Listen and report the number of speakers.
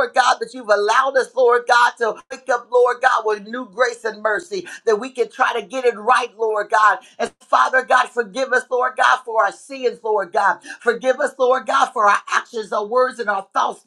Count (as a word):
one